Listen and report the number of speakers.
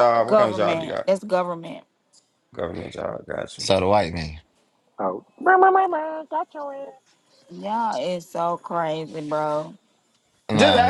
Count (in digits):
4